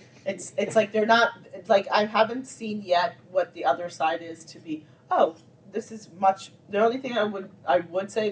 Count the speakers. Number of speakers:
1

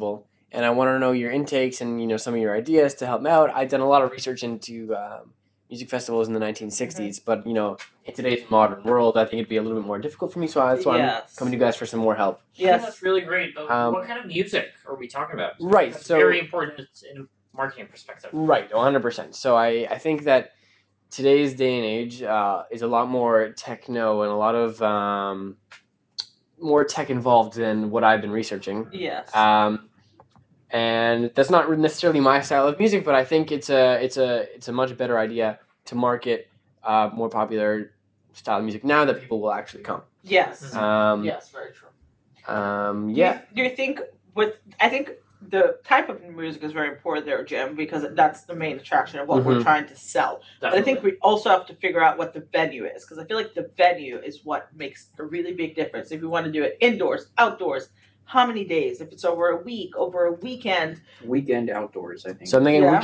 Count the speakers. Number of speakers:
4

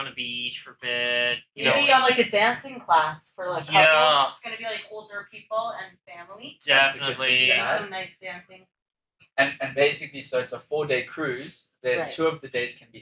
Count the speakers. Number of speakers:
3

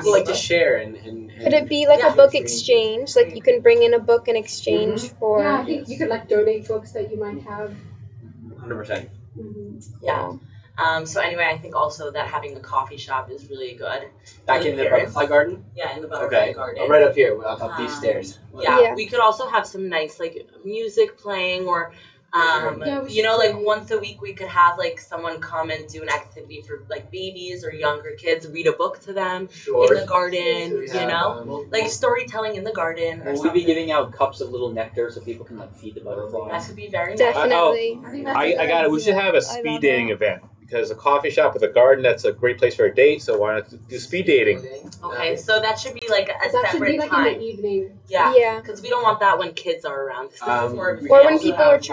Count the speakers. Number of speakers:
6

